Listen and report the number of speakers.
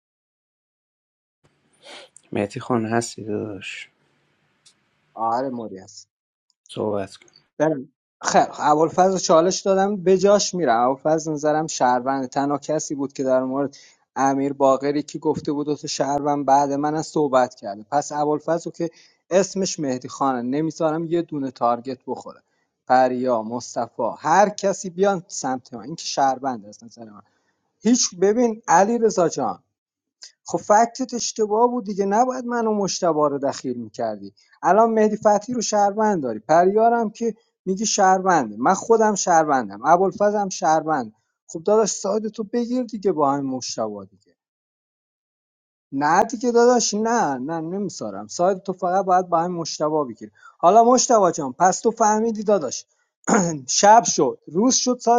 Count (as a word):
two